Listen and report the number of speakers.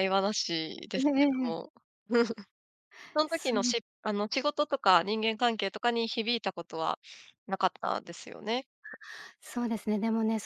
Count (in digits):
2